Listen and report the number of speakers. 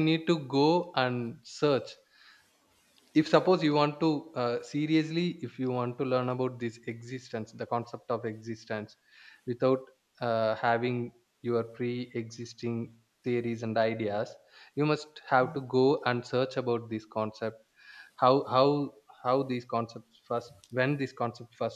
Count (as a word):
one